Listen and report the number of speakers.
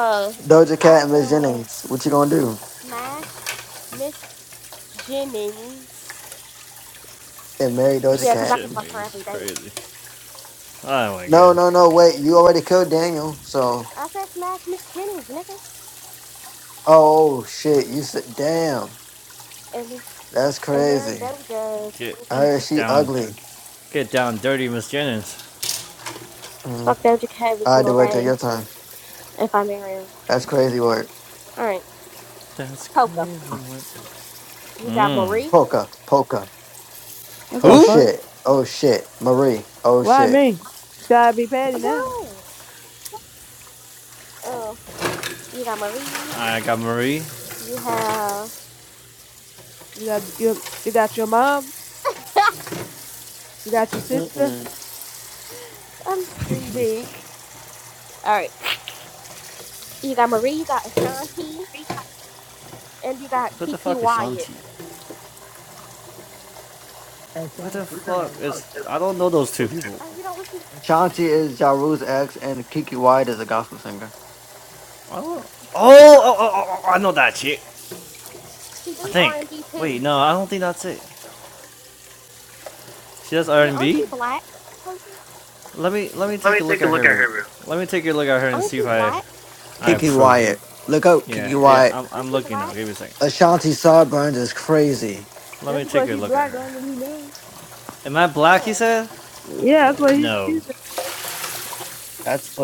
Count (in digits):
4